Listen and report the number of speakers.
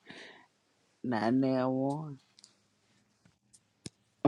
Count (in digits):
1